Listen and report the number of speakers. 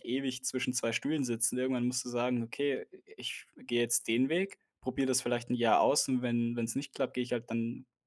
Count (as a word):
one